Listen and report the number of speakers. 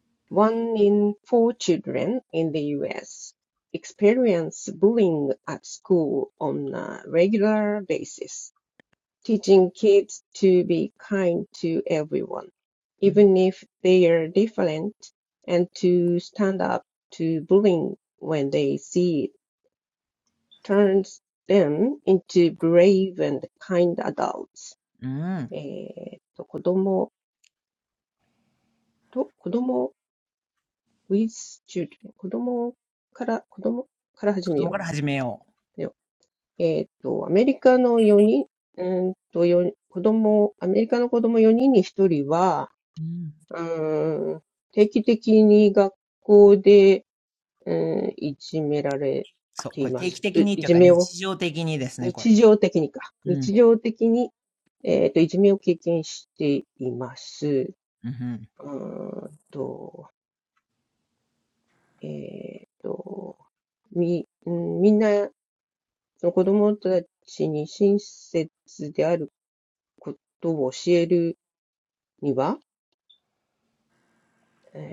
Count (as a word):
two